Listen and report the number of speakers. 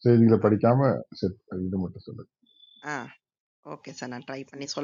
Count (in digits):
2